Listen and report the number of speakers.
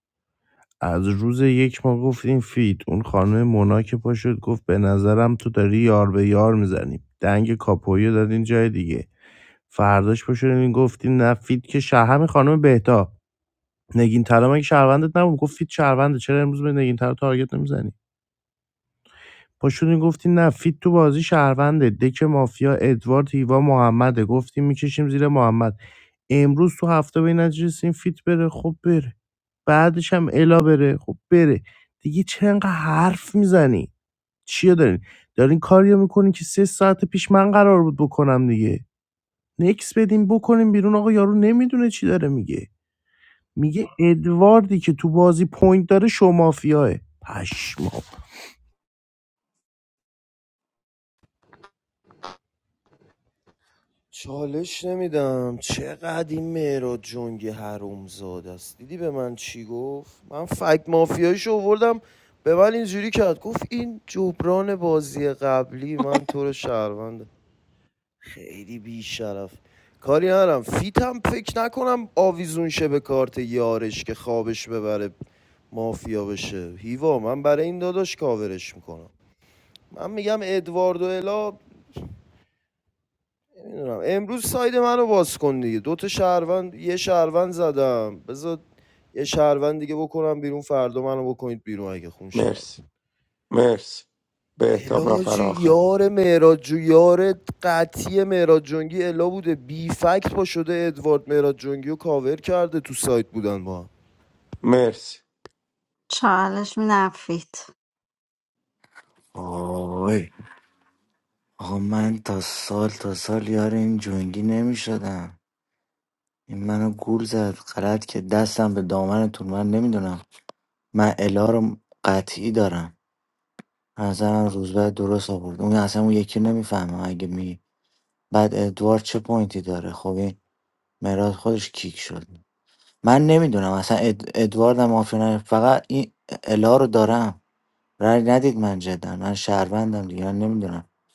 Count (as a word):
five